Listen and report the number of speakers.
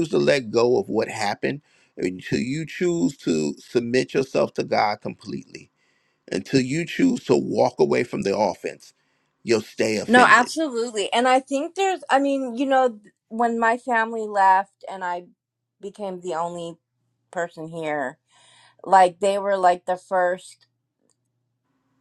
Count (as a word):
two